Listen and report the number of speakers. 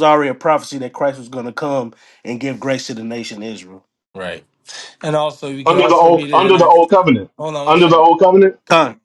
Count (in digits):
3